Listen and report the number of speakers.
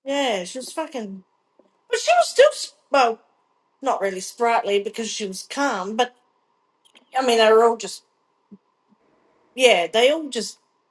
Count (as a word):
one